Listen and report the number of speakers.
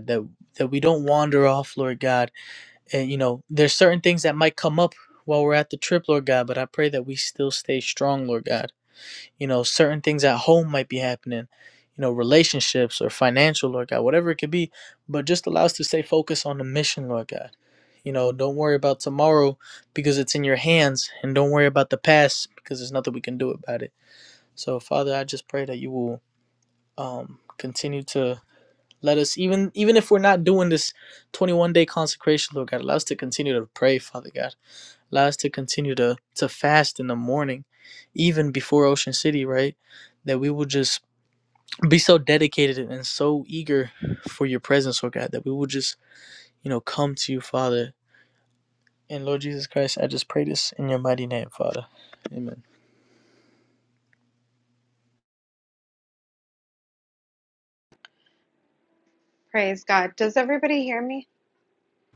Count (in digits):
2